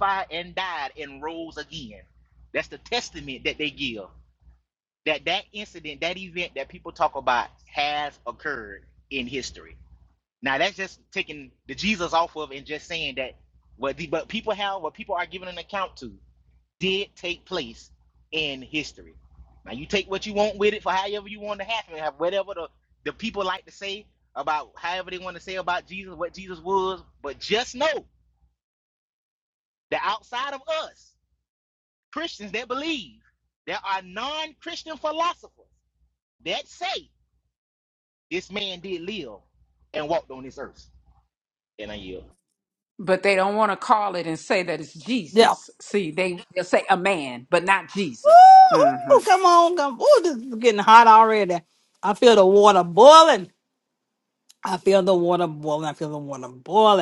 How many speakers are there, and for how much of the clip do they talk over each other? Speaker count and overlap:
3, about 1%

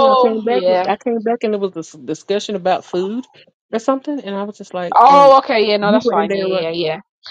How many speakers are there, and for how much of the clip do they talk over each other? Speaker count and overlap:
2, about 29%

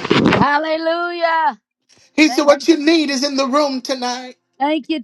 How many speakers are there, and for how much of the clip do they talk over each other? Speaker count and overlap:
2, about 6%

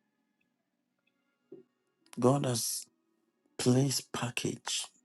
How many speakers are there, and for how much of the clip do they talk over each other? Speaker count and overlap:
1, no overlap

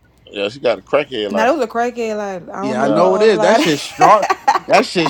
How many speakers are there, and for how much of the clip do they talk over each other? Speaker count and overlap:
3, about 25%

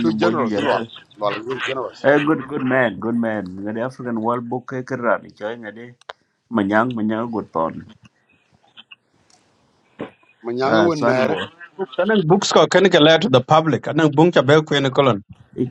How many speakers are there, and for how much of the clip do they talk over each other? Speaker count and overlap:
3, about 10%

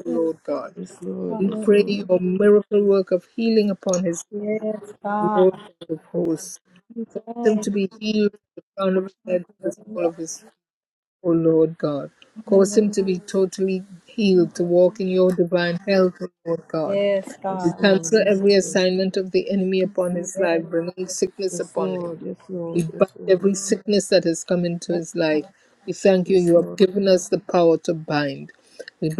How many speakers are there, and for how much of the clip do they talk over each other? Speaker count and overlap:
3, about 20%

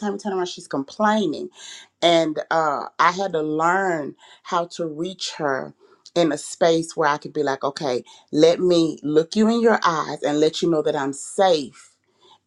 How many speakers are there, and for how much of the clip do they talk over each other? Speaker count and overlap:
1, no overlap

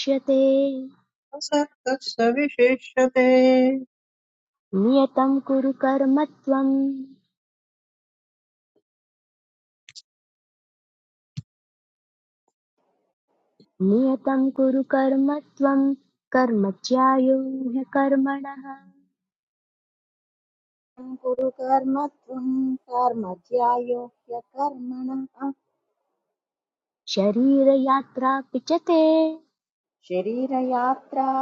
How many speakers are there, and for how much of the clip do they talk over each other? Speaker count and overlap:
3, no overlap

